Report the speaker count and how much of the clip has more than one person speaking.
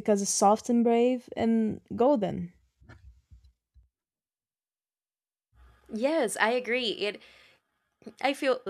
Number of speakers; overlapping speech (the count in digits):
2, no overlap